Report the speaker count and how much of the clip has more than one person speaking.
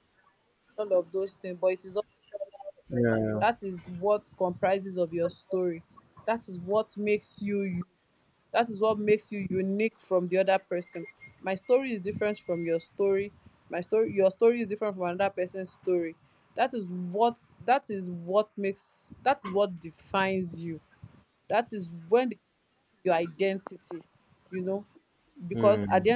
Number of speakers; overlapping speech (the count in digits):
2, about 2%